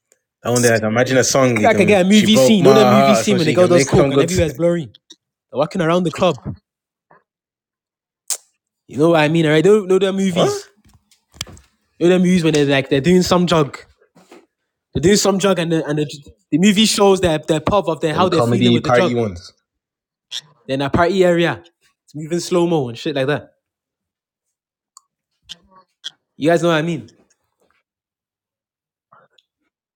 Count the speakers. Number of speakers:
2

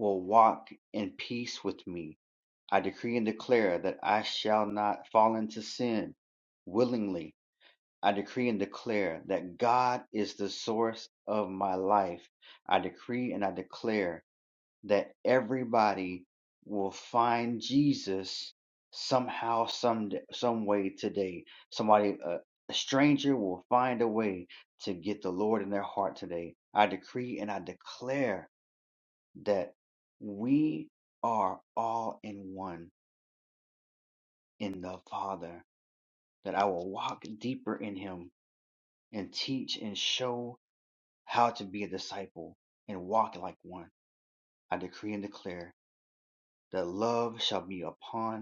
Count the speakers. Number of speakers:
1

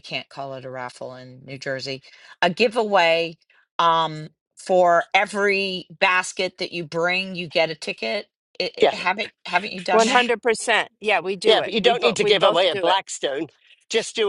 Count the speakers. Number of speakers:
3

